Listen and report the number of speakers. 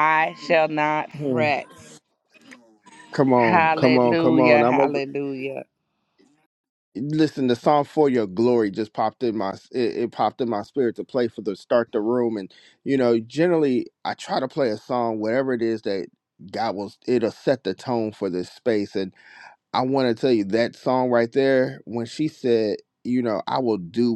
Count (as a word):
two